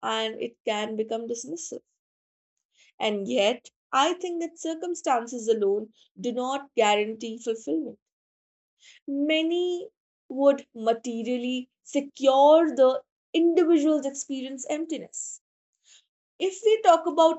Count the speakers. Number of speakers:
one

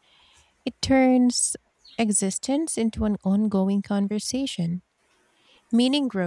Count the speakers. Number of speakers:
one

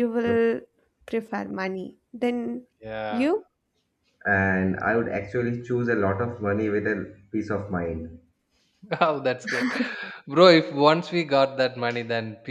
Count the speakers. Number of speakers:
three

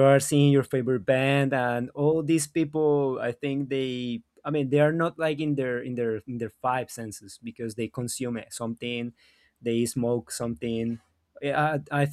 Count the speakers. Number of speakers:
one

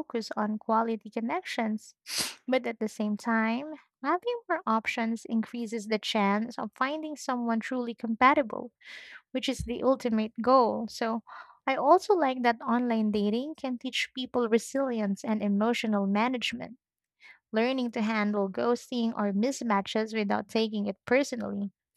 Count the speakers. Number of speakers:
one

